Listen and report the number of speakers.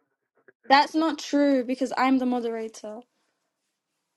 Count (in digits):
1